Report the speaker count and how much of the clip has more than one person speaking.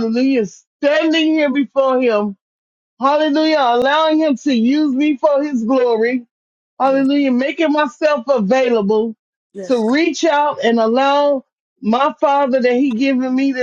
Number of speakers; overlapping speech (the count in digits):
1, no overlap